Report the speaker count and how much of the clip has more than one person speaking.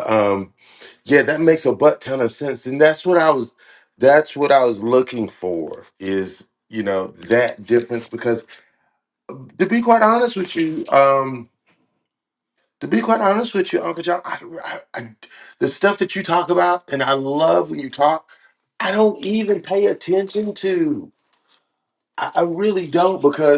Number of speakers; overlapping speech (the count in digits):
1, no overlap